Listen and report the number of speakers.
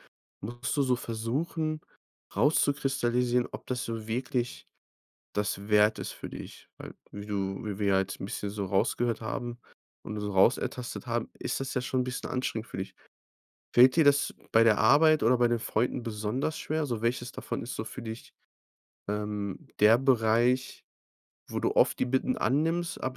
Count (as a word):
one